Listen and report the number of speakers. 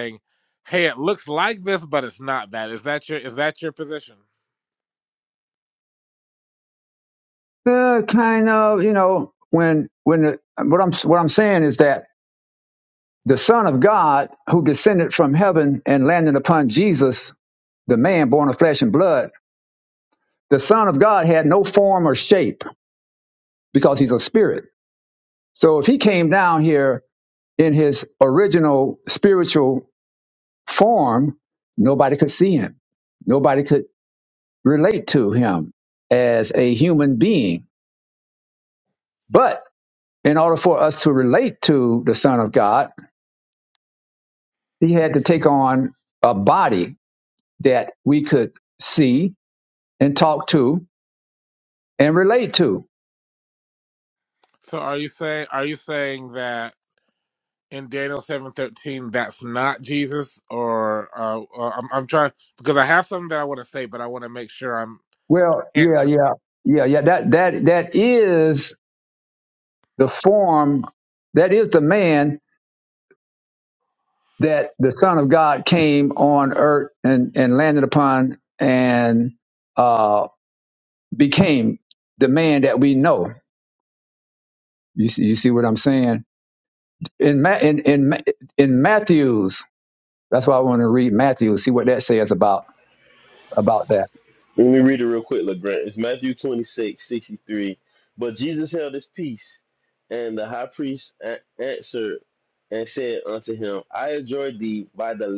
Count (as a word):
three